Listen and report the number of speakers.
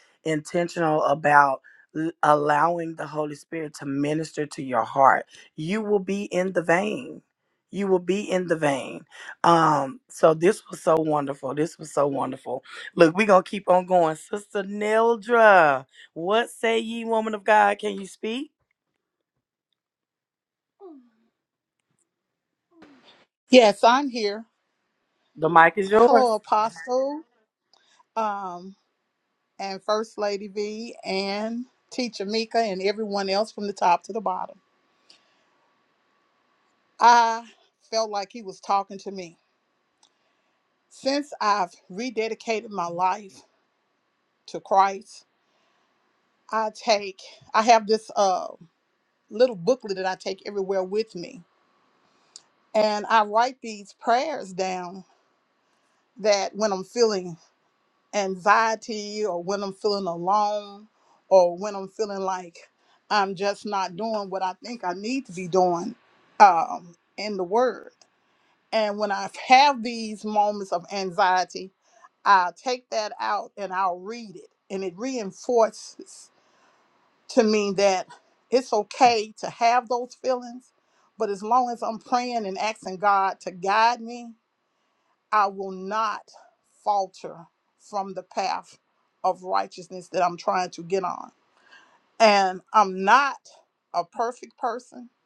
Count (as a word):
two